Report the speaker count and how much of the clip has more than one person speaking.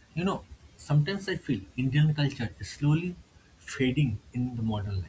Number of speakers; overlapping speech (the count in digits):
1, no overlap